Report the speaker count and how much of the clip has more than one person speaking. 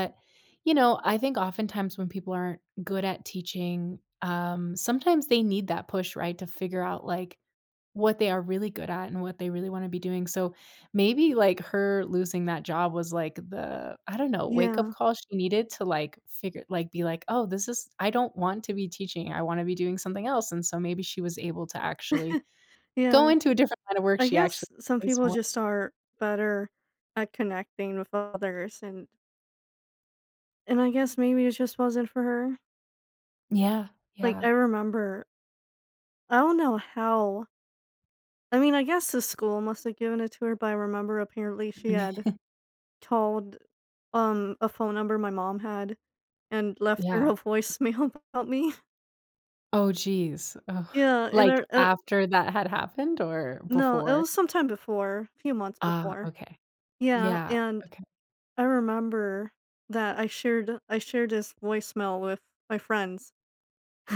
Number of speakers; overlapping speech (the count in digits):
2, about 7%